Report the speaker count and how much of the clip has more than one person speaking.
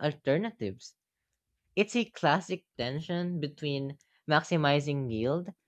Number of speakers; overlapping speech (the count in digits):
1, no overlap